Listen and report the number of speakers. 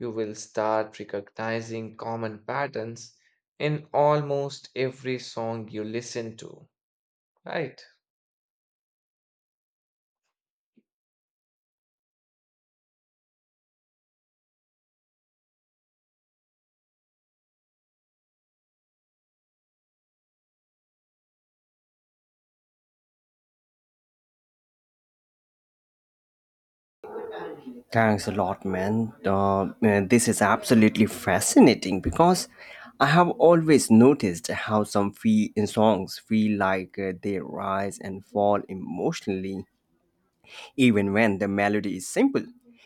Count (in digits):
2